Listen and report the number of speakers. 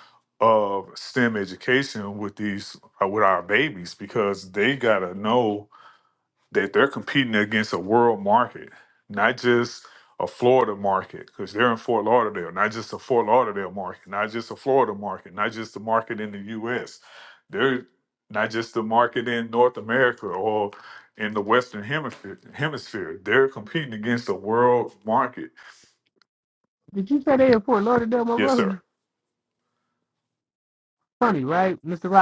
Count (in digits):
2